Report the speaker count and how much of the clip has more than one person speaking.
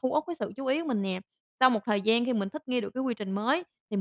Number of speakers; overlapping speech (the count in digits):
1, no overlap